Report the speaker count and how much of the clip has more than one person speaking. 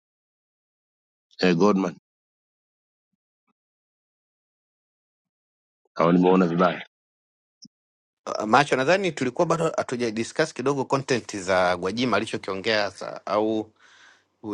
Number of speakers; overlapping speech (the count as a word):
two, no overlap